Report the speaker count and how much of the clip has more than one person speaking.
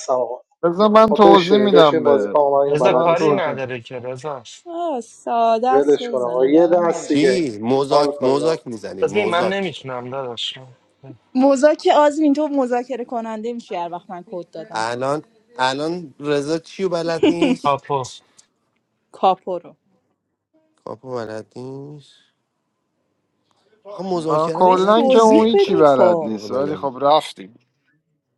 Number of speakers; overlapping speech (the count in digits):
5, about 29%